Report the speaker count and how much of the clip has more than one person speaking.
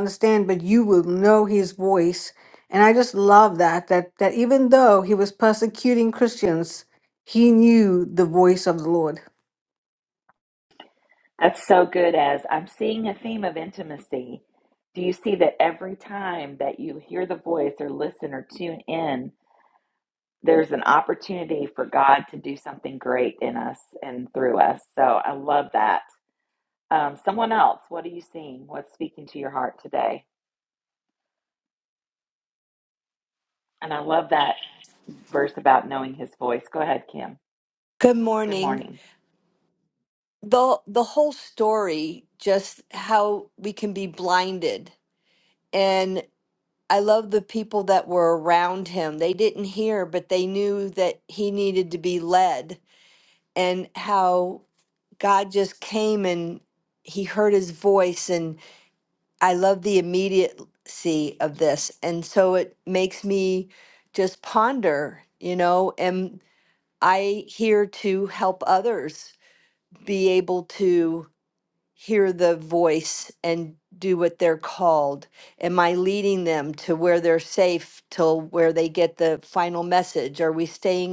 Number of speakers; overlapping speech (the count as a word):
three, under 1%